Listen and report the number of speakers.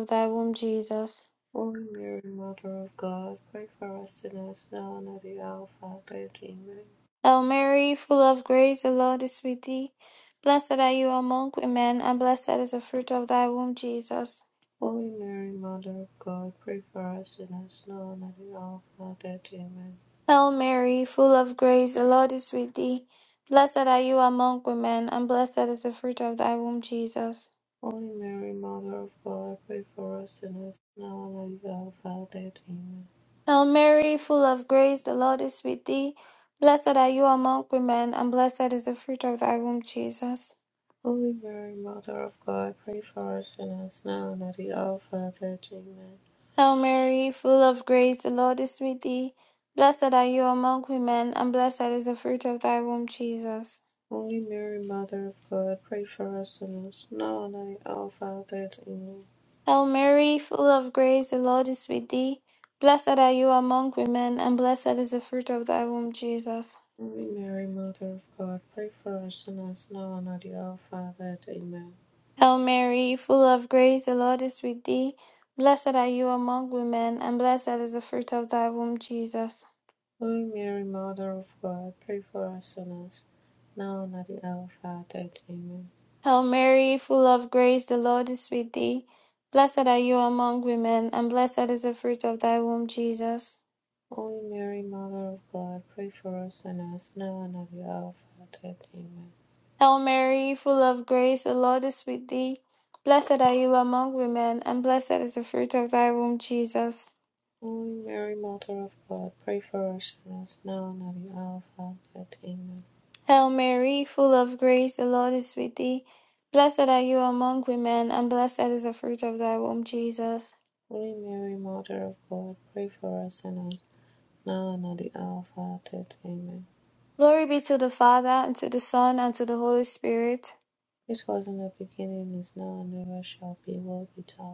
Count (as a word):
two